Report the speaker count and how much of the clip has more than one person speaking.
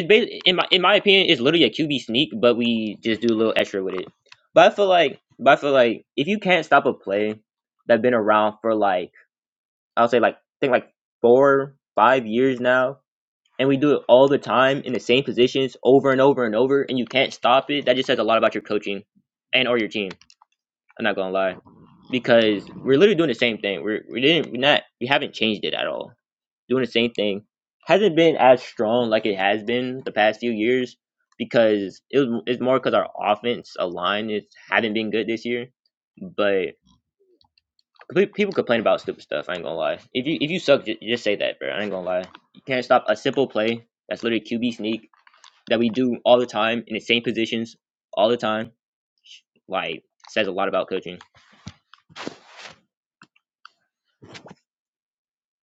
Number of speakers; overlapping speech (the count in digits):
1, no overlap